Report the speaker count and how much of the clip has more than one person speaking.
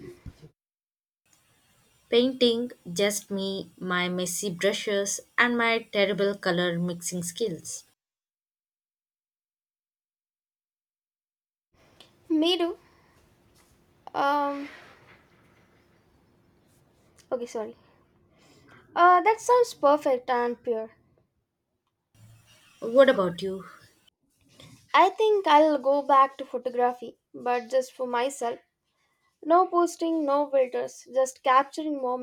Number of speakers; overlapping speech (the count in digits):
2, no overlap